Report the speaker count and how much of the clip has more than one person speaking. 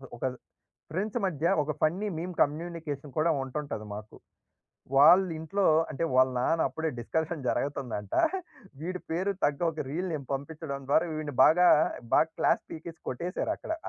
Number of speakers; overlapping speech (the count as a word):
one, no overlap